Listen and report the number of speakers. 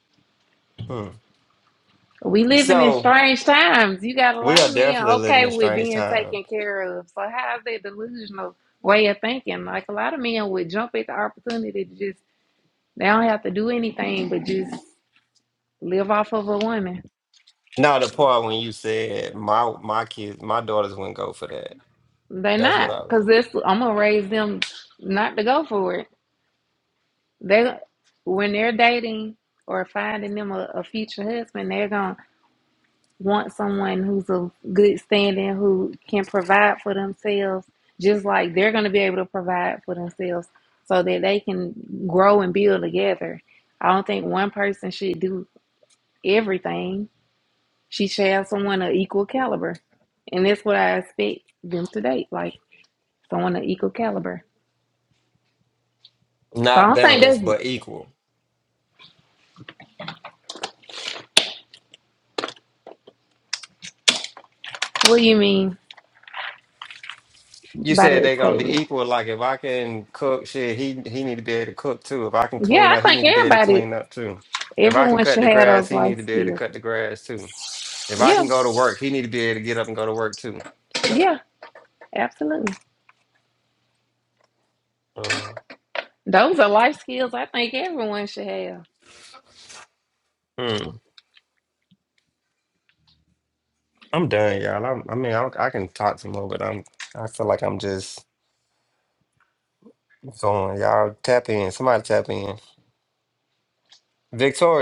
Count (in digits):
2